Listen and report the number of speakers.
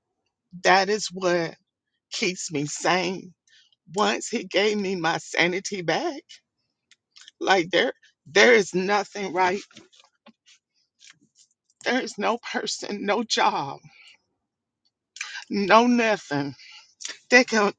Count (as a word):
one